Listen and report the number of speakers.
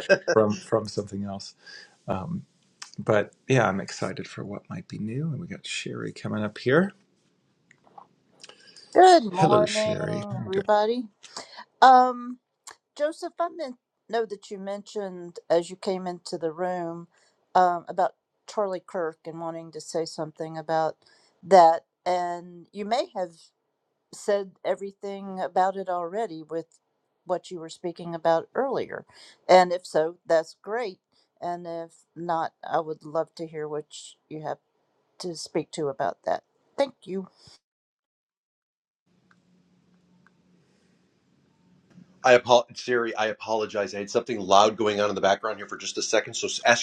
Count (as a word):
three